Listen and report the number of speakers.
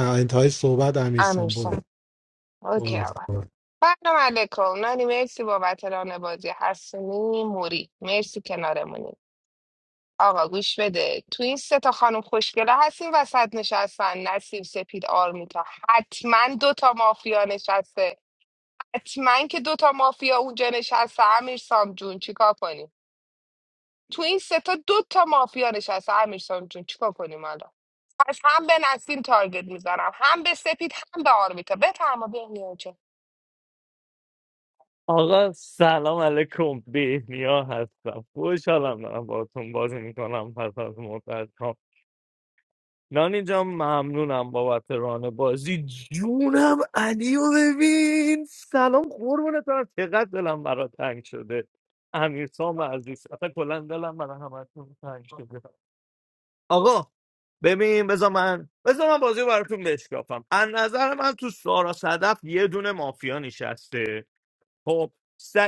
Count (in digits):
3